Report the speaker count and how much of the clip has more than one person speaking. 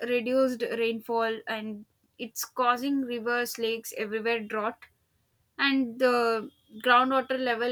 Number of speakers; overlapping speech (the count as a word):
one, no overlap